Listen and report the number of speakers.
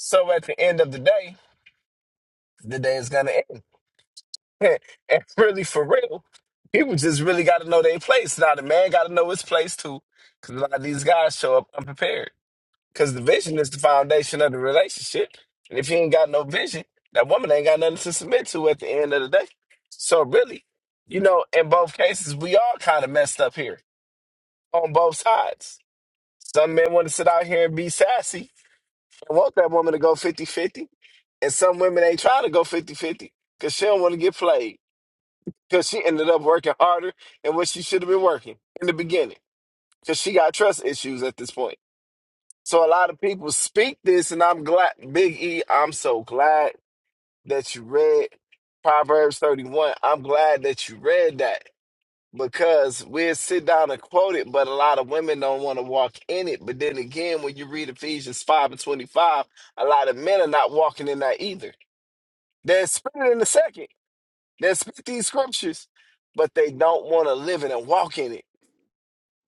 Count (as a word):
one